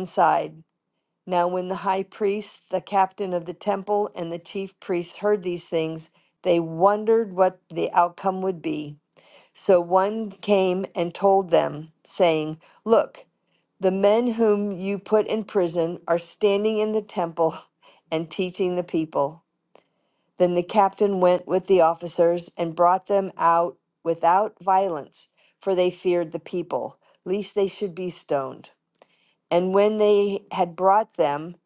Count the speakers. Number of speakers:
one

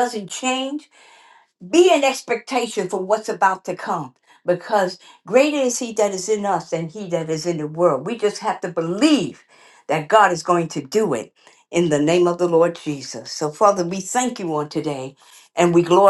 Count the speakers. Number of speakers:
one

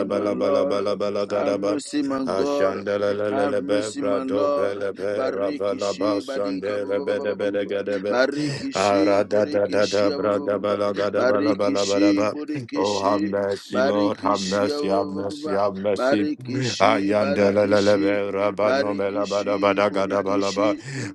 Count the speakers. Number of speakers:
two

